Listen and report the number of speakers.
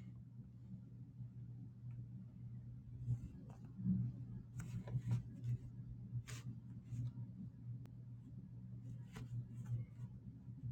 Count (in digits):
0